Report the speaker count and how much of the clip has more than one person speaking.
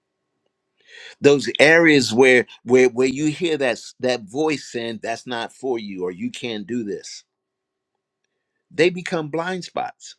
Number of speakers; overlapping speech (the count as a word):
one, no overlap